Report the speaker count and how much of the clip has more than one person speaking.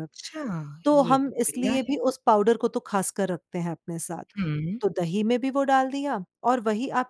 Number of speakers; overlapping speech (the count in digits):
2, about 15%